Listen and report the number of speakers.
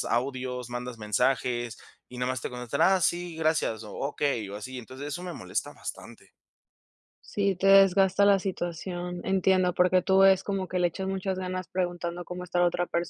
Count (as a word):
two